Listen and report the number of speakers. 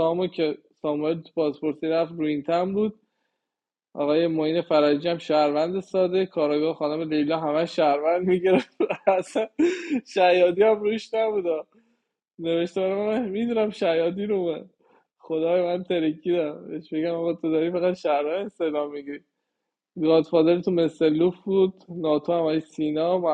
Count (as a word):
one